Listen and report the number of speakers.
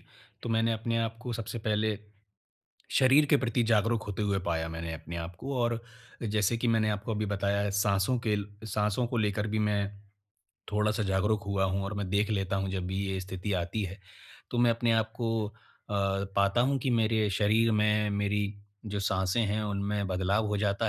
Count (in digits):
1